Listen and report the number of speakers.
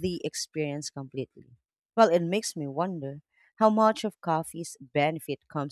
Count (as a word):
one